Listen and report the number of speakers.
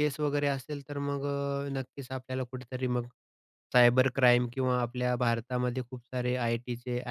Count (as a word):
one